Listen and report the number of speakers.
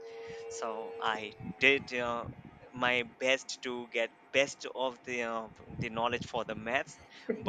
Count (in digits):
1